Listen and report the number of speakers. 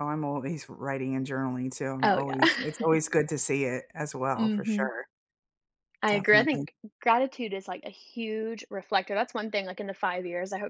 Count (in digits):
2